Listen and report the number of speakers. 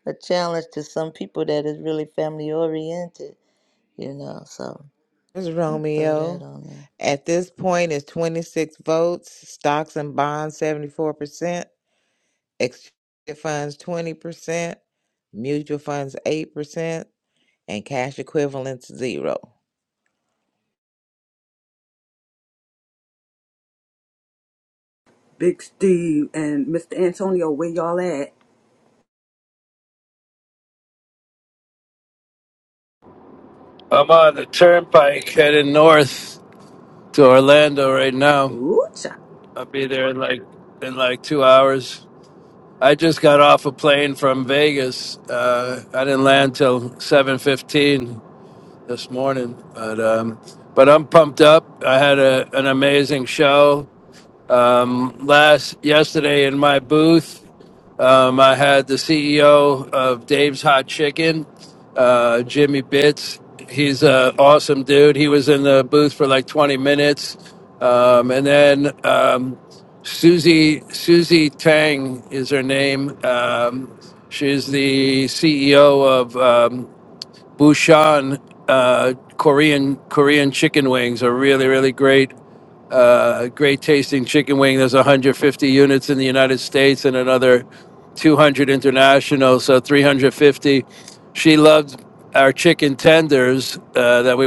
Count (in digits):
4